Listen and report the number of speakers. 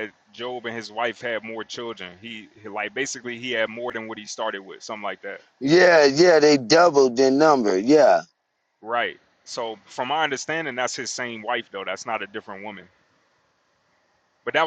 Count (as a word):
two